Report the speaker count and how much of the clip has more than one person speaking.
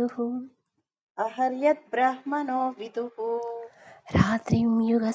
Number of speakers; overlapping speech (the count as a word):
two, no overlap